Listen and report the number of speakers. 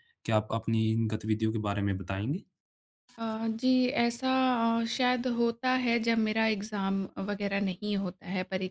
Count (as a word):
two